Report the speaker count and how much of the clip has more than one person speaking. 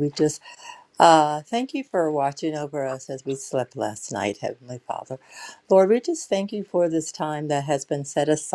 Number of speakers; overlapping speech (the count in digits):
1, no overlap